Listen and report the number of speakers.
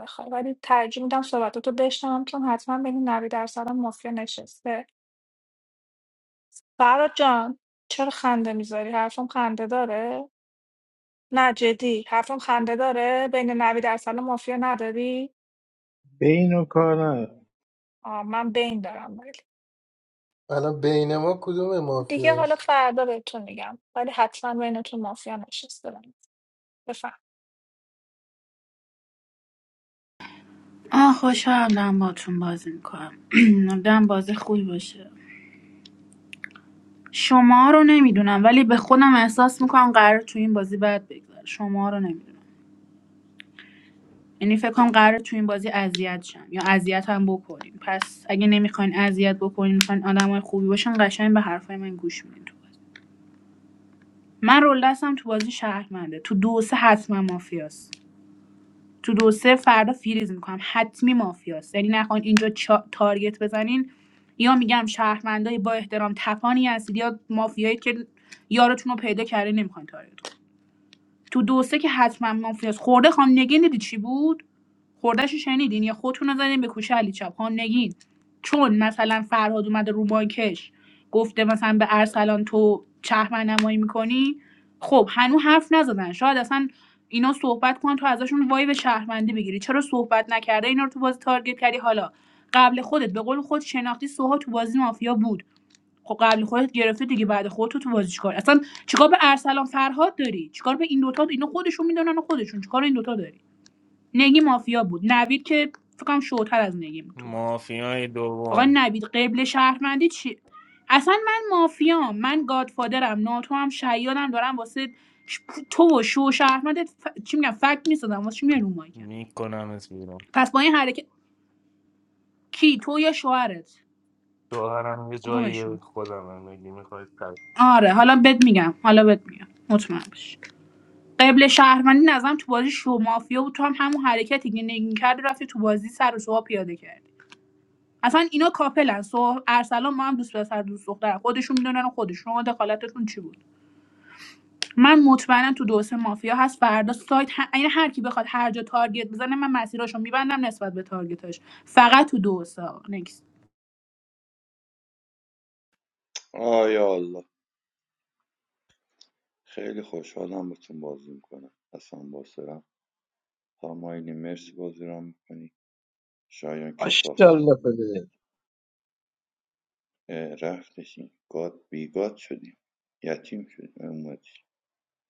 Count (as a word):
six